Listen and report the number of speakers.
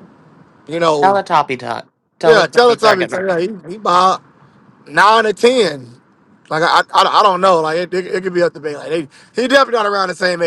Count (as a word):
two